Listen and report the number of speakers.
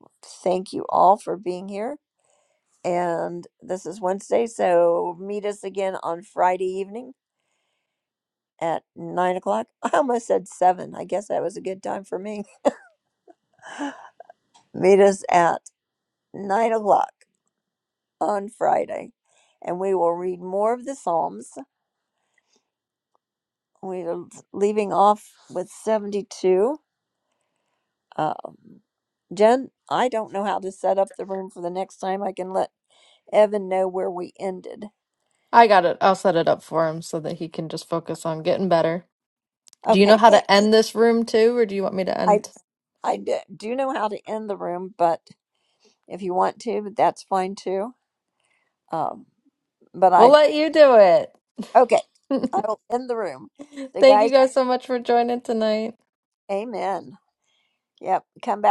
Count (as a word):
two